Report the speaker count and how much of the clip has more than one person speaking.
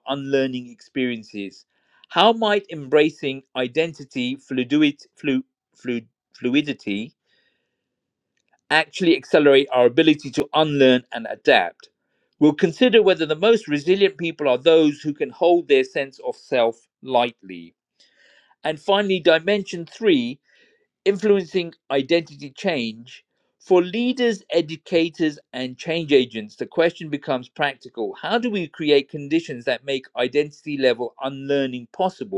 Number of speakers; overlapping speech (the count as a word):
one, no overlap